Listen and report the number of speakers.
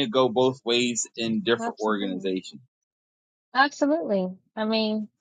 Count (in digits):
2